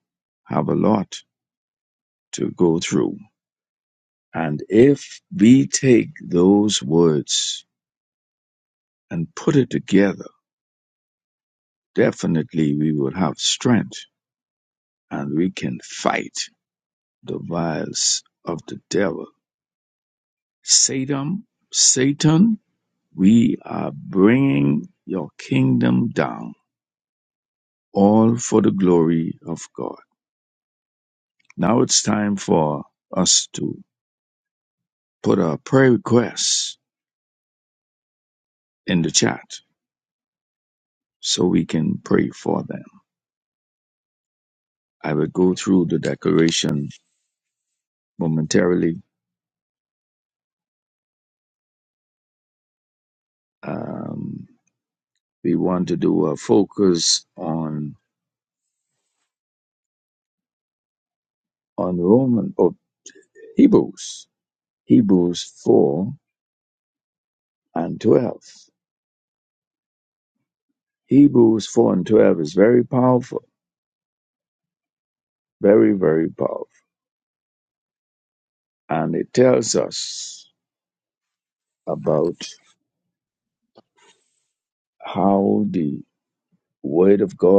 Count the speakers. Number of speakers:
1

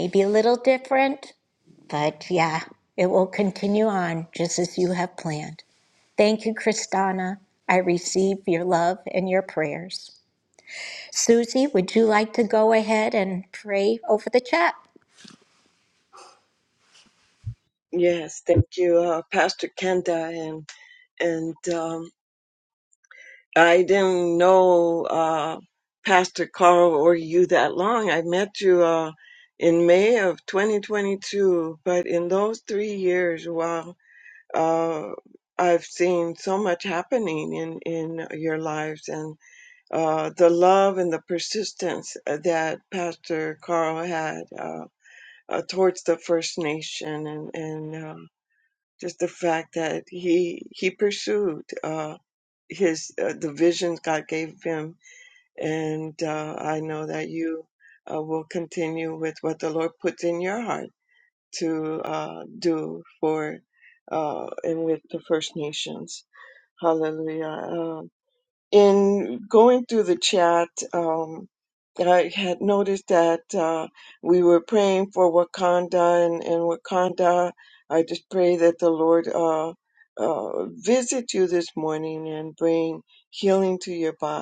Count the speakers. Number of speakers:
2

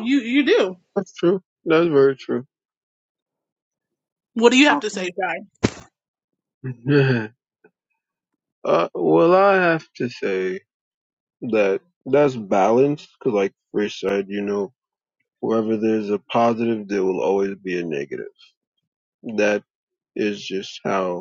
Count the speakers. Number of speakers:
2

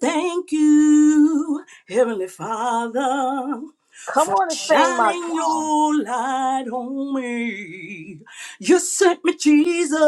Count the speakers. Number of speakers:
2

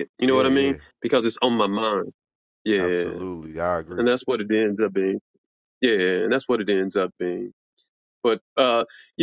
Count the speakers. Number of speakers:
2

